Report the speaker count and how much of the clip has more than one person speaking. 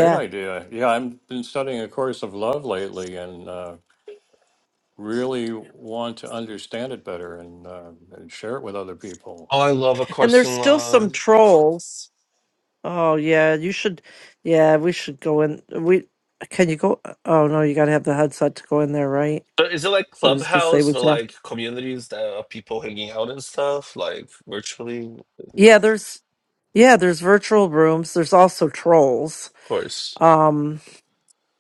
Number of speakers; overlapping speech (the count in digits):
3, about 6%